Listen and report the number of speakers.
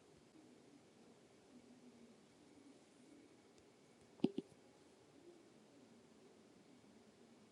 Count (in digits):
0